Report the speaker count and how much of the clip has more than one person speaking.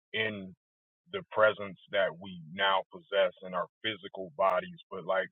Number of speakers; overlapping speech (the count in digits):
1, no overlap